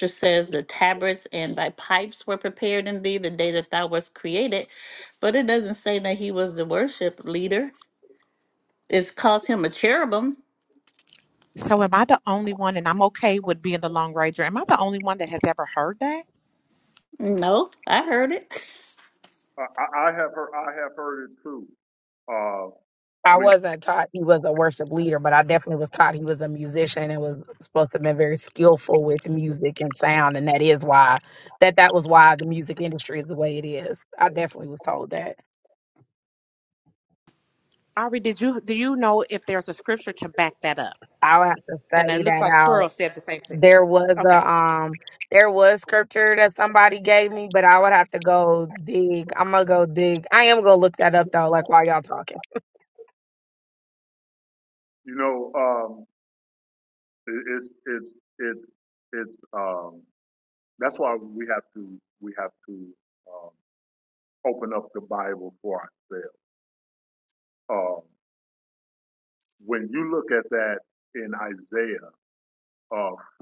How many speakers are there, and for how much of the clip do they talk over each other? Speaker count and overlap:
4, about 2%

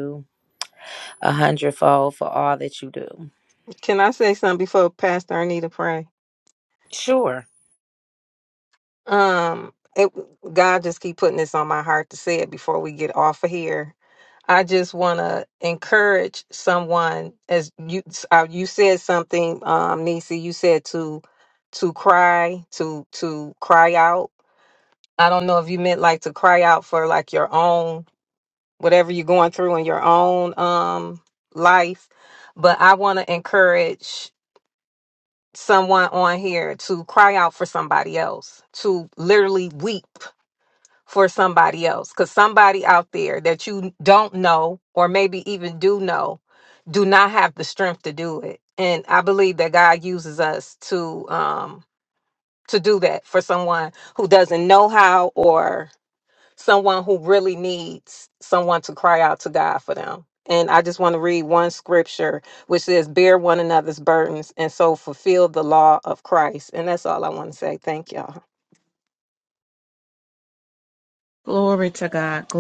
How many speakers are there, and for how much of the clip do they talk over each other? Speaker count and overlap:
3, no overlap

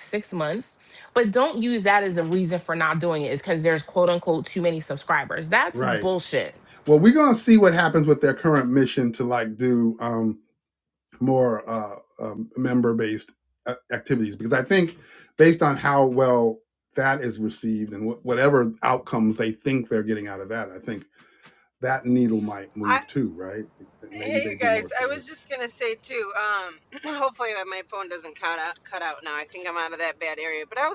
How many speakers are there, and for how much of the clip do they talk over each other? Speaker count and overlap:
3, about 5%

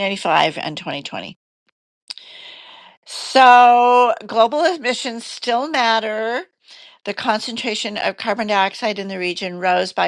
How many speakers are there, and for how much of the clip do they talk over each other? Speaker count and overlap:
1, no overlap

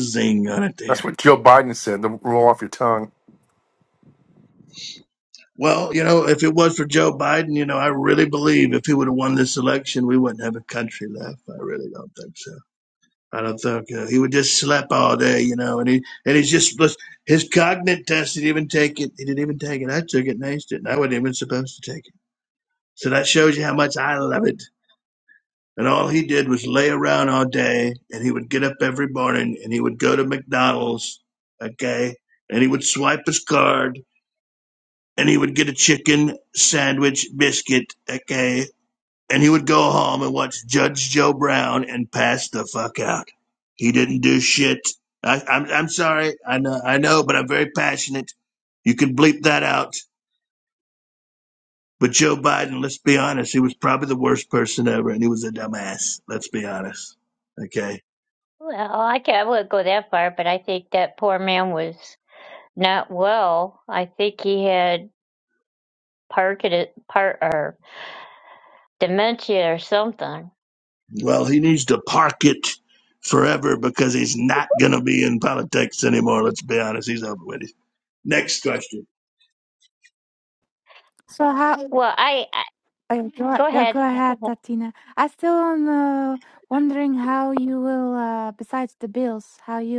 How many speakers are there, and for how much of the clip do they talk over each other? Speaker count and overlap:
4, about 1%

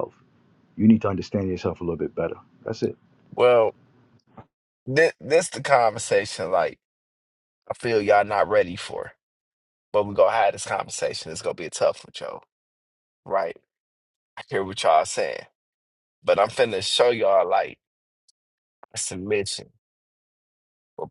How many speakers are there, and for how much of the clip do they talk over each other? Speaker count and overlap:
2, no overlap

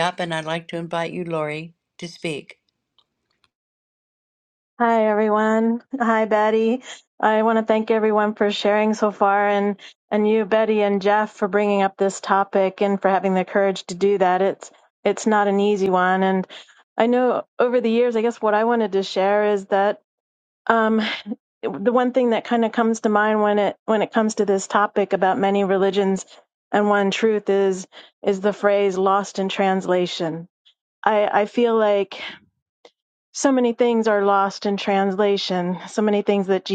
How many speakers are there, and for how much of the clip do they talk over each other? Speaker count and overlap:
2, no overlap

